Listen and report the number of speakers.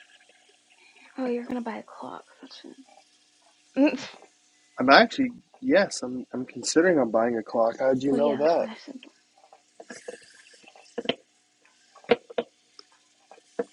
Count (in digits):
2